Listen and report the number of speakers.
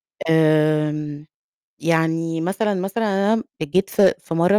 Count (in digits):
1